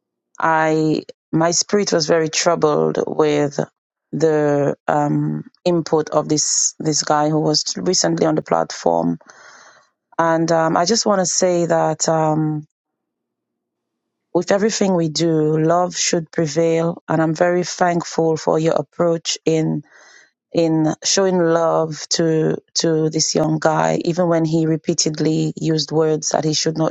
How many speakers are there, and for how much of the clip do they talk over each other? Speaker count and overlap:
one, no overlap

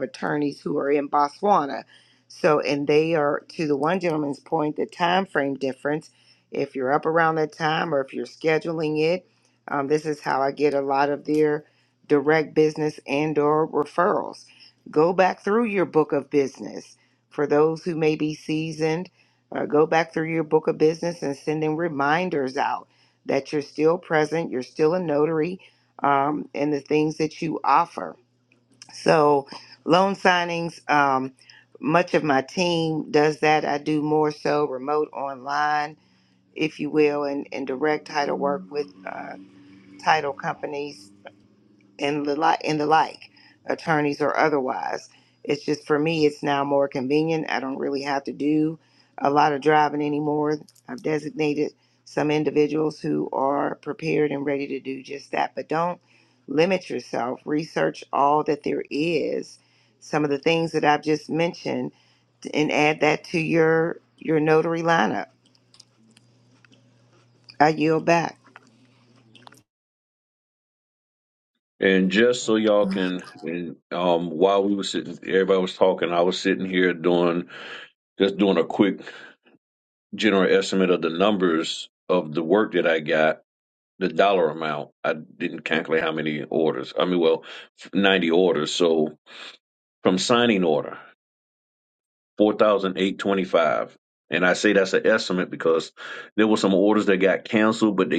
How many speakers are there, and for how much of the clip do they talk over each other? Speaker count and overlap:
two, no overlap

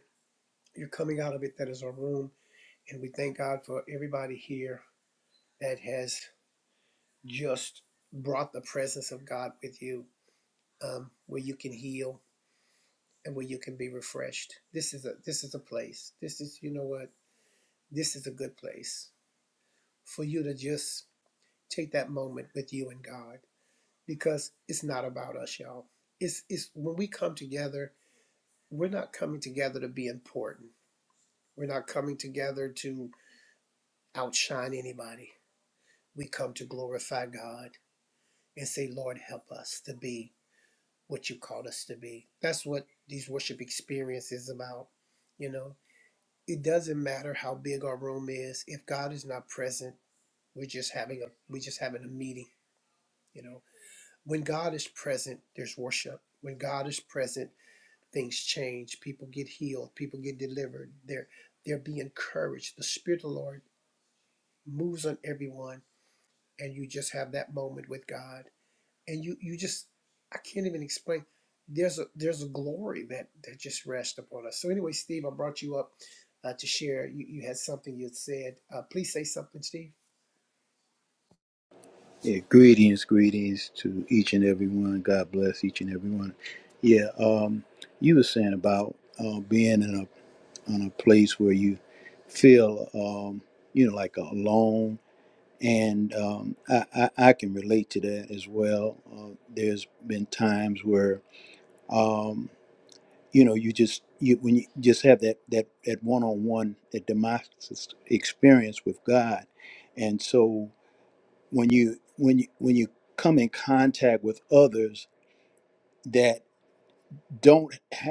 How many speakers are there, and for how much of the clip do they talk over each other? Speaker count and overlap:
two, no overlap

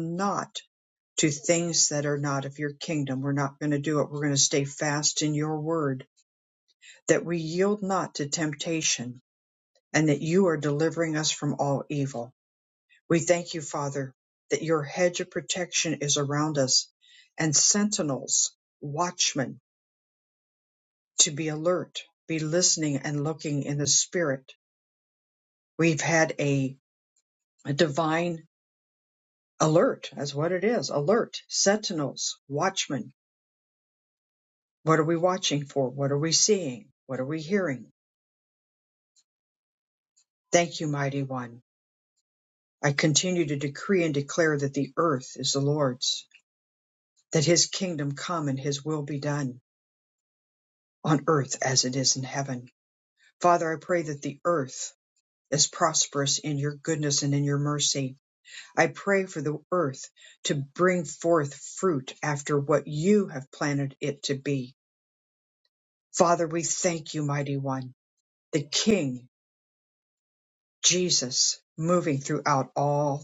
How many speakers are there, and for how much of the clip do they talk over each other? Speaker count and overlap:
one, no overlap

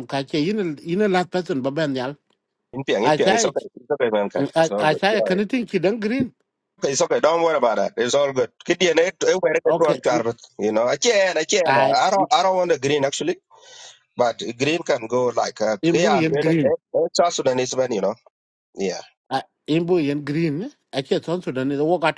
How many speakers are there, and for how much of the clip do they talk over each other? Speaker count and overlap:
two, about 12%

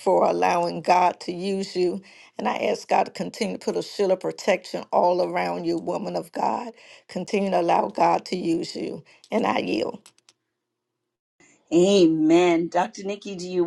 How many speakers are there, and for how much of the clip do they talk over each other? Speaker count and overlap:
two, no overlap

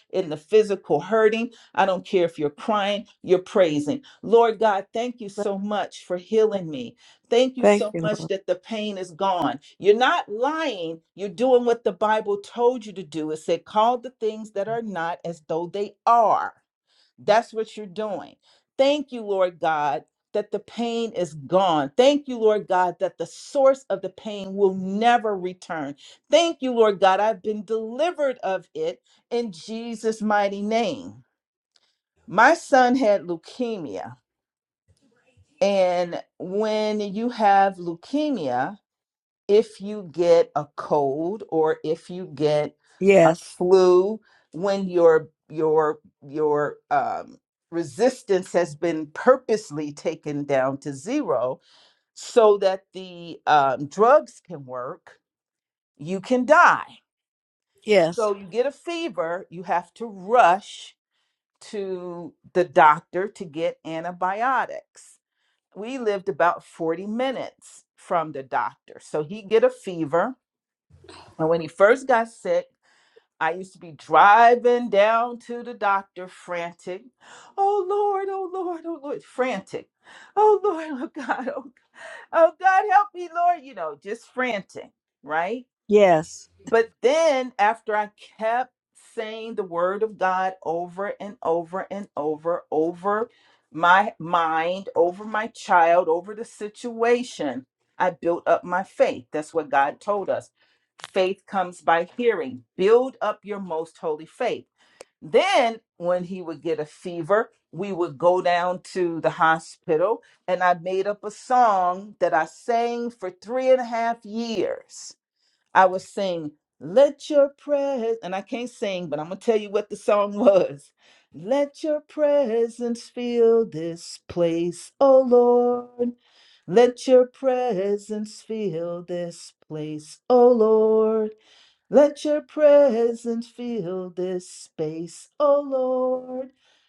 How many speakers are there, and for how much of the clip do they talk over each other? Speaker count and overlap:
two, about 1%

